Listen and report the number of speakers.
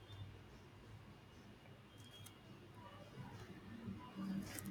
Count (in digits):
0